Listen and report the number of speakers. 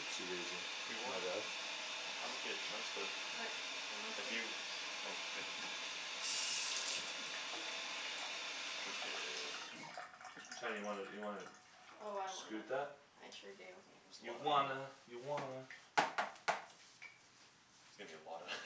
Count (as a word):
three